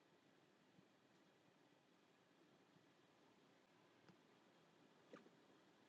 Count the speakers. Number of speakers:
0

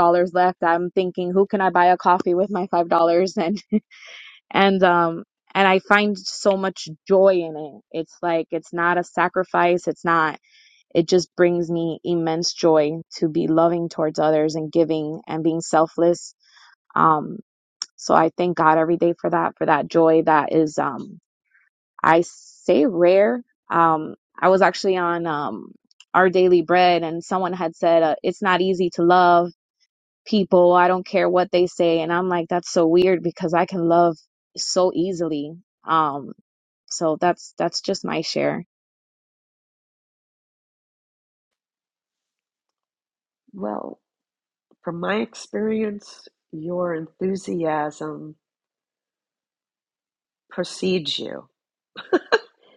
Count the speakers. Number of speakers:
2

